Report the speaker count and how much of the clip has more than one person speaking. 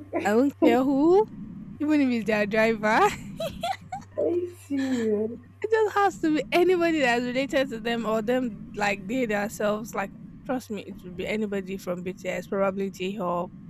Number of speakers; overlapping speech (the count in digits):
2, no overlap